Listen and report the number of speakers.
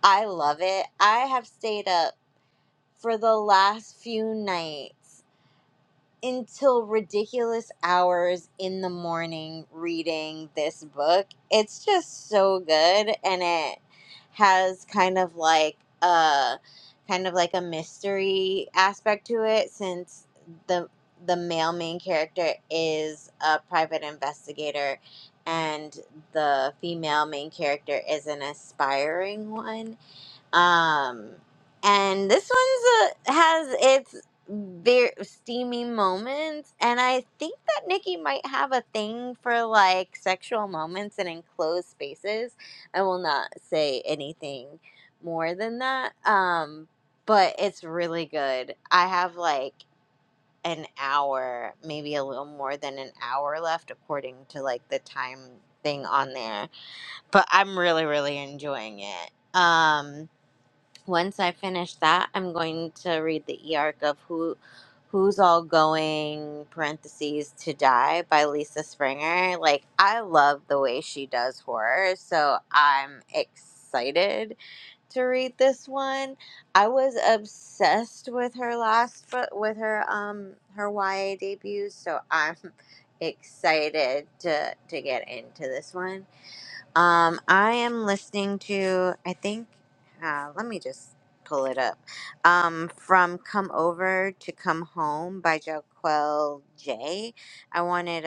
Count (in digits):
1